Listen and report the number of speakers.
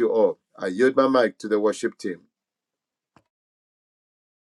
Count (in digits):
1